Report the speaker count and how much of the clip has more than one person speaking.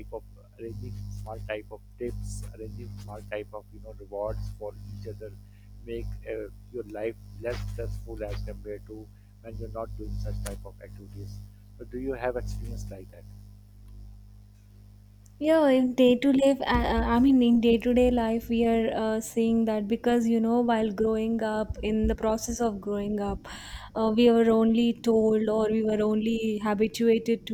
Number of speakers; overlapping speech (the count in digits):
2, no overlap